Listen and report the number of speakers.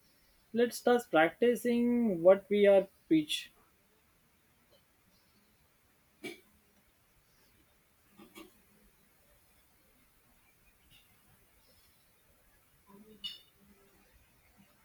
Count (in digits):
1